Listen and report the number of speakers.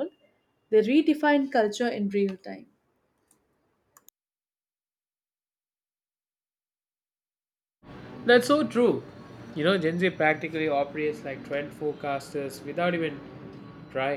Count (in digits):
2